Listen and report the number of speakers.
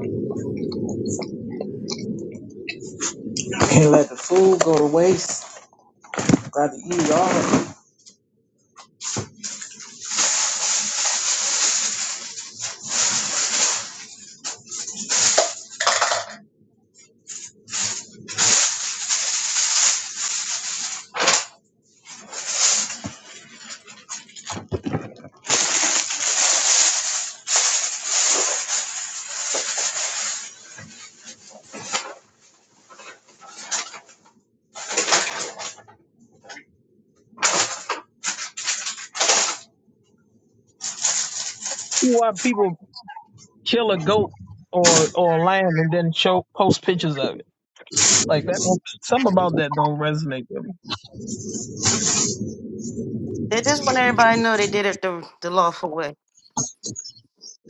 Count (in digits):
3